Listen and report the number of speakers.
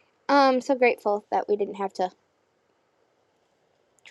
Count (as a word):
one